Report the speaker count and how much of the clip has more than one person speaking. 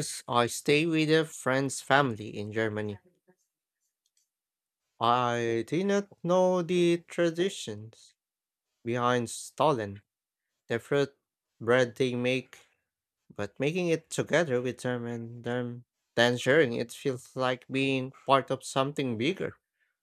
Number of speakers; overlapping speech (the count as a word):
one, no overlap